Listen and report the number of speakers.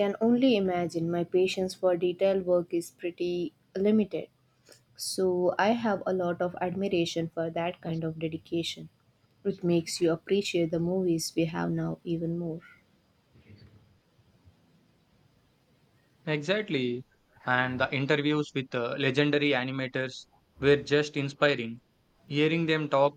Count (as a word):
two